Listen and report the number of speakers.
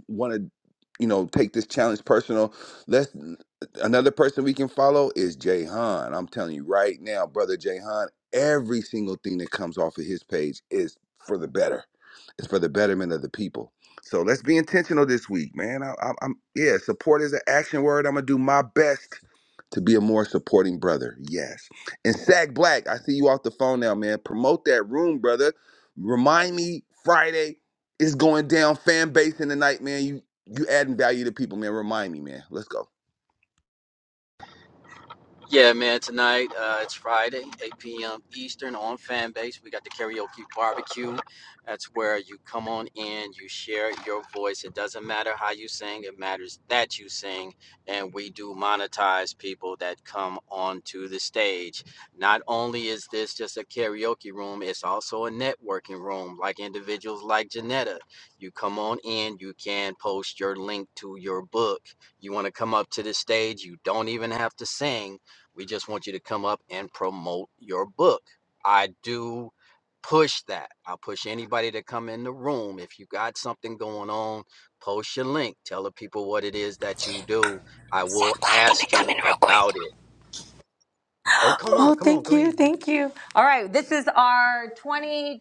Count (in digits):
3